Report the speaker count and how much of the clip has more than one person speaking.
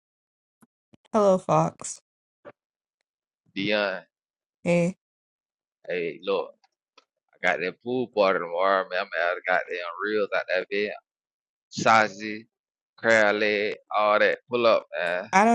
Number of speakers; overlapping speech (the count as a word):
two, no overlap